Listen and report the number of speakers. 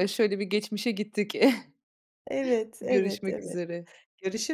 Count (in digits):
2